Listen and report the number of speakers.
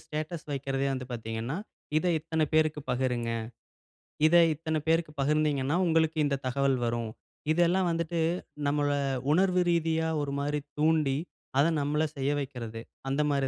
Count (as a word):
one